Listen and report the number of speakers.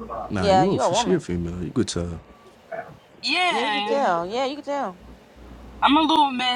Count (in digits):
3